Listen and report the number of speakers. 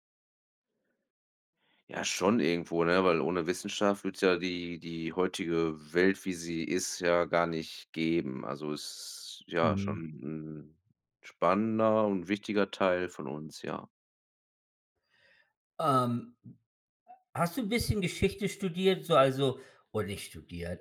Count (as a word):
two